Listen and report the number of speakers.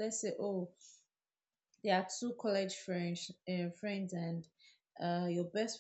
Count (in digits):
1